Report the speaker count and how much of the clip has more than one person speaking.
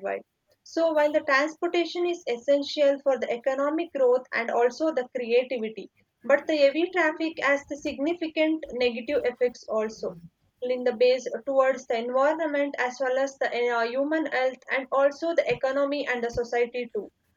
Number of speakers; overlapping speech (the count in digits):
1, no overlap